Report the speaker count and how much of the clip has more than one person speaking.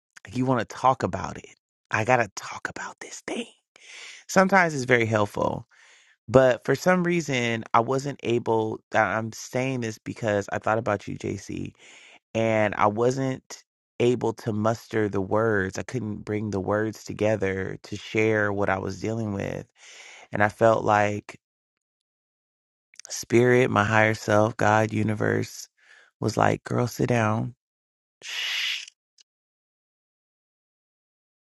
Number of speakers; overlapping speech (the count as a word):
one, no overlap